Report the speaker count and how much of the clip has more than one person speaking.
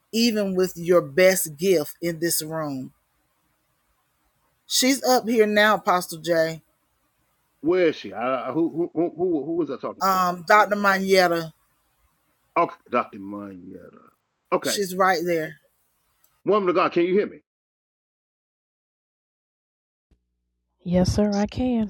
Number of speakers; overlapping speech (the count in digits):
3, about 1%